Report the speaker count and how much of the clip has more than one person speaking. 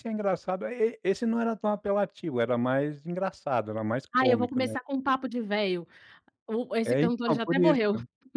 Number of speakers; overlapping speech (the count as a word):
two, about 22%